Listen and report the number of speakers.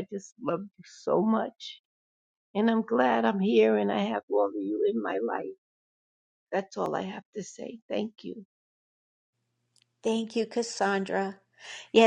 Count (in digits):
2